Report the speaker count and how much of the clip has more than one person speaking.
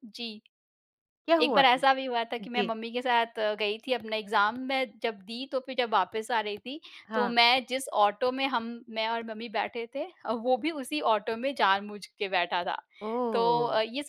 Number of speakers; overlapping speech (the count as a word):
two, about 9%